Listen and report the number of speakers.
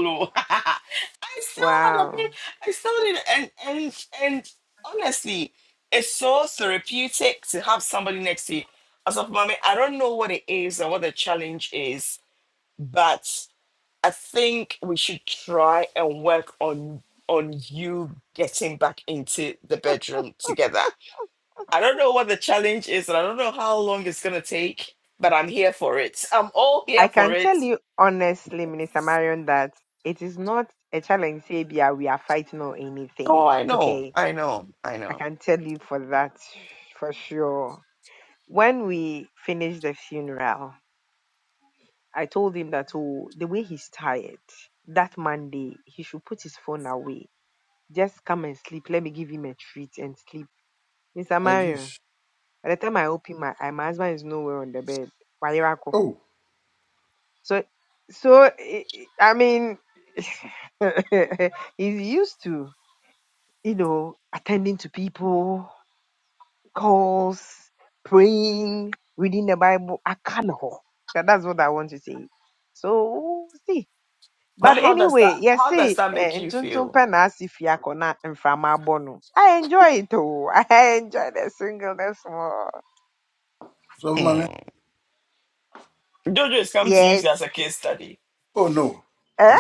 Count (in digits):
3